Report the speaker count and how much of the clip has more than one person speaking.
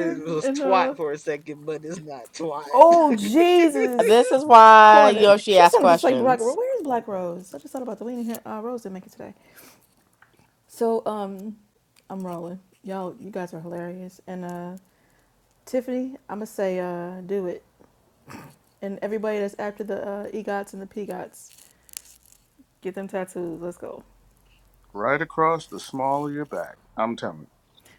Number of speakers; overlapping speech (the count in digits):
4, about 9%